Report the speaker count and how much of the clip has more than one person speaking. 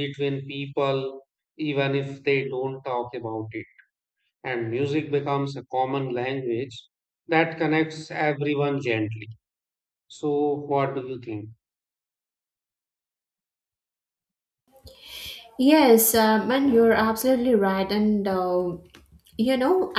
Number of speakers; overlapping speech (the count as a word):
two, no overlap